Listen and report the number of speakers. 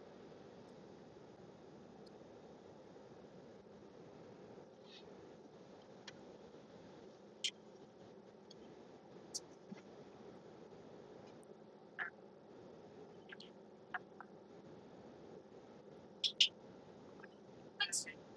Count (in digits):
0